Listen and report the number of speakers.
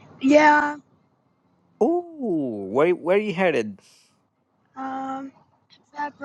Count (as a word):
two